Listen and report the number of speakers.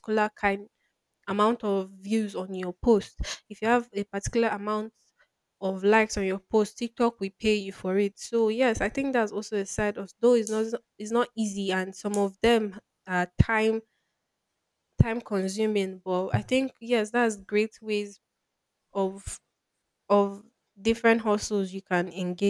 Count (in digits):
1